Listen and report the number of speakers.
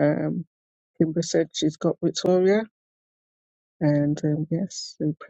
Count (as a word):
one